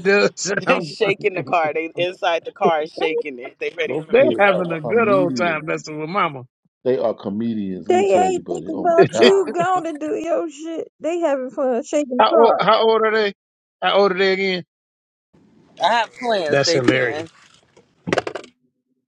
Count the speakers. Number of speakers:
4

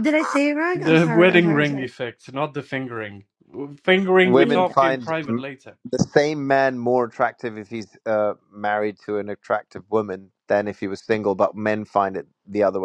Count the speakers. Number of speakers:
3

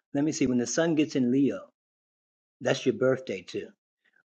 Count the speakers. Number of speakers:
1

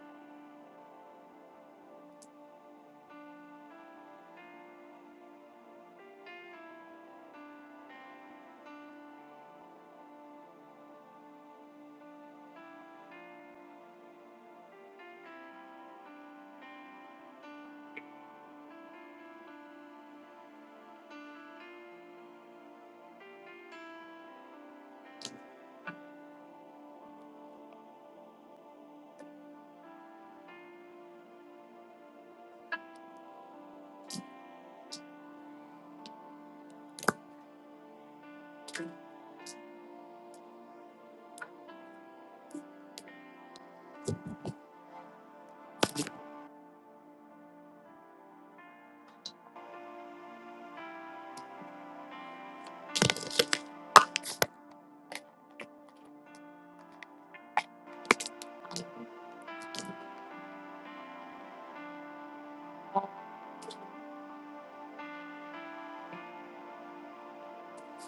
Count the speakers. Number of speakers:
0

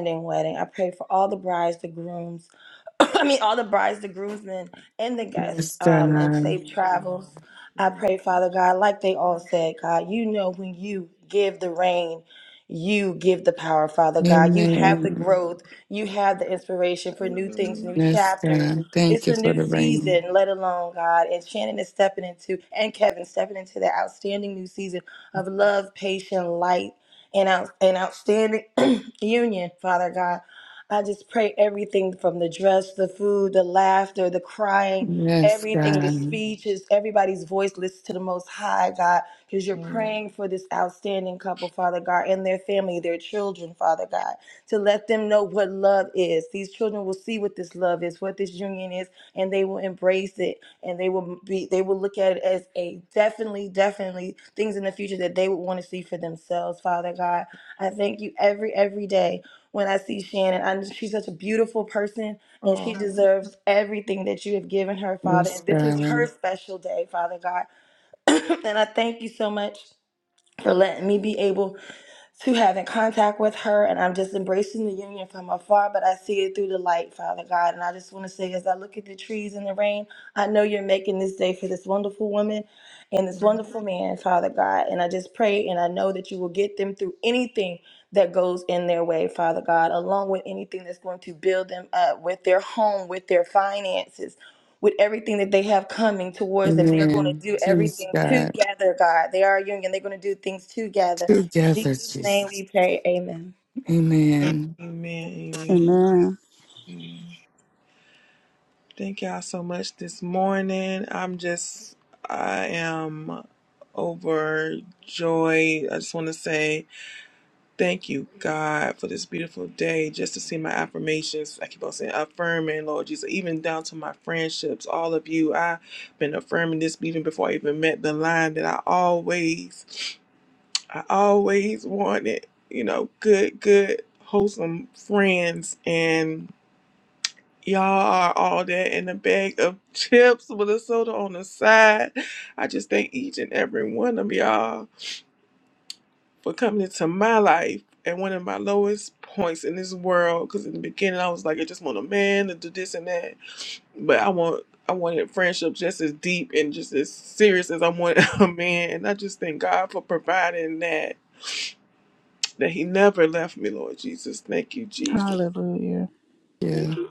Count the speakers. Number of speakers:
4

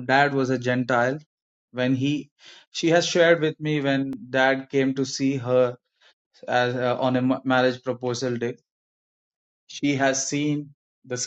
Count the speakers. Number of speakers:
1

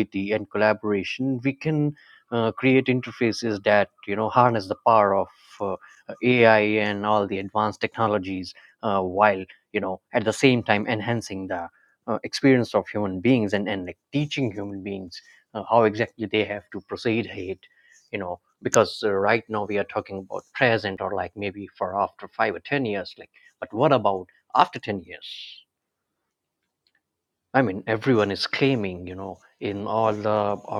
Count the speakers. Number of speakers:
1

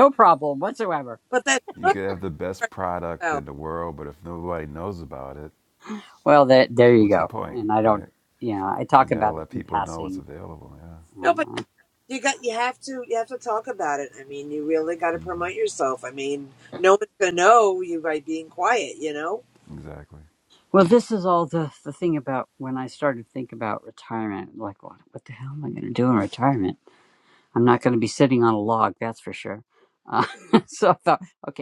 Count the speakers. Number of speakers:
3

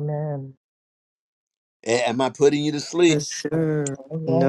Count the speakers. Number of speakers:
3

